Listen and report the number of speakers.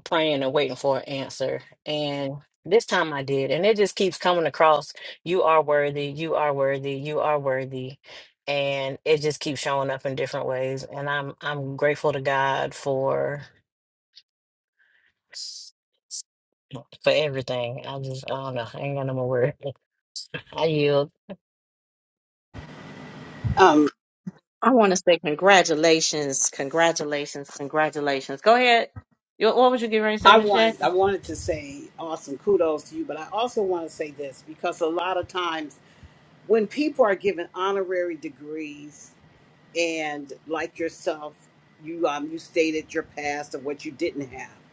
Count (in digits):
3